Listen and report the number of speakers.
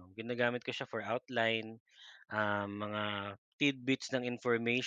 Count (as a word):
one